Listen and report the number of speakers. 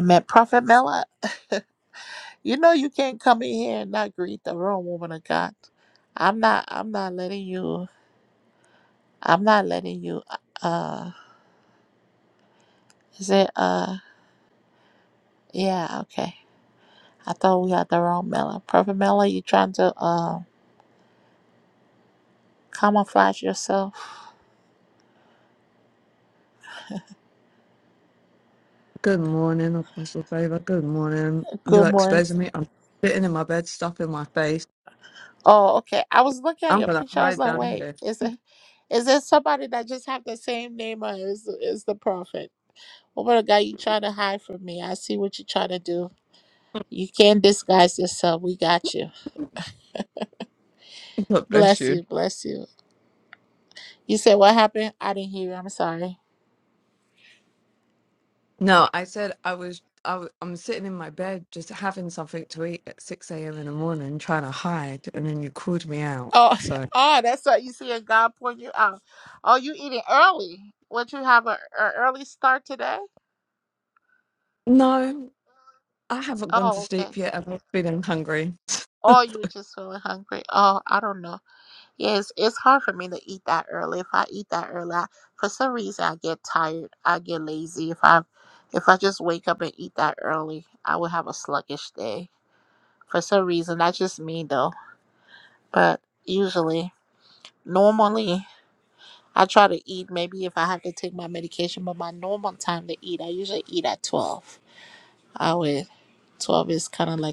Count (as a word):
two